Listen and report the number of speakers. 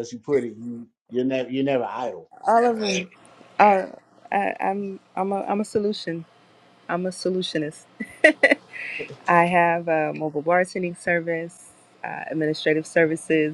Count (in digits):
2